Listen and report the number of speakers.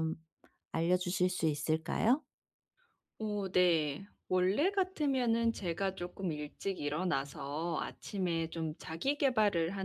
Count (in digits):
2